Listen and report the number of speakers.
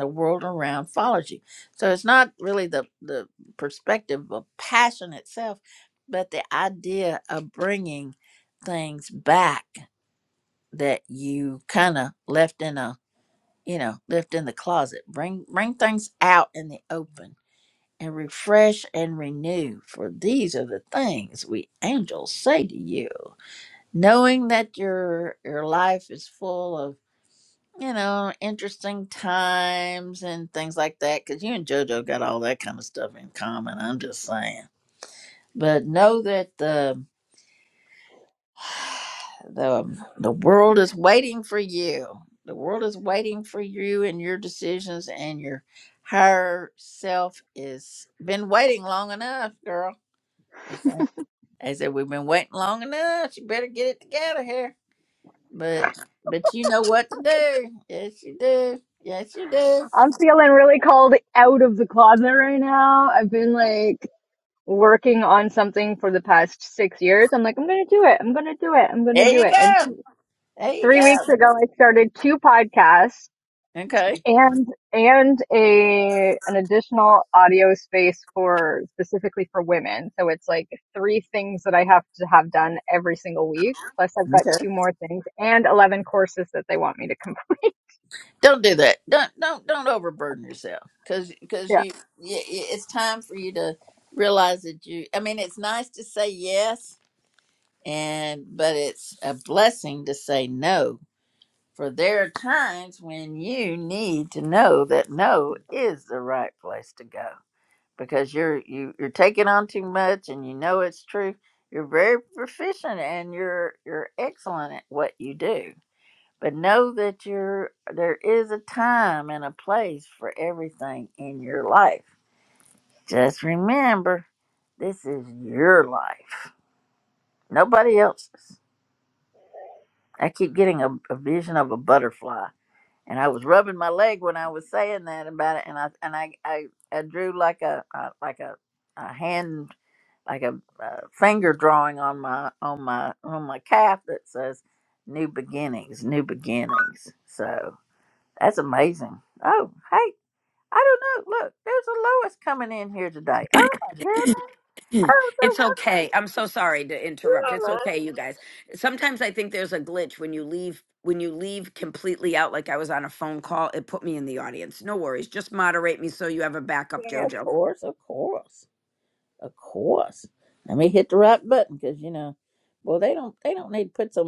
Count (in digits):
3